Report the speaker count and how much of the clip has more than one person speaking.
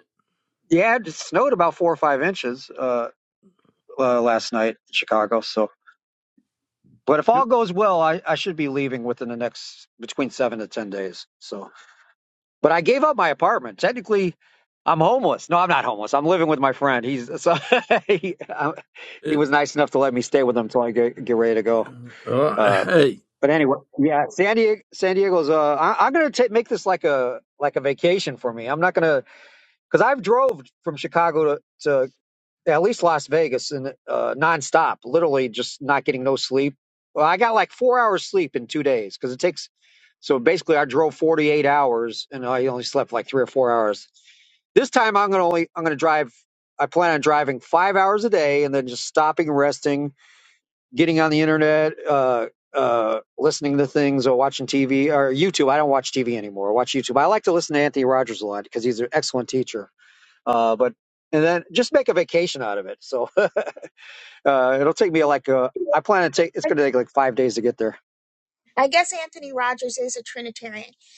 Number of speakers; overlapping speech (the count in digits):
3, about 1%